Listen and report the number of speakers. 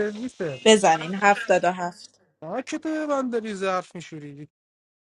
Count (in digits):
2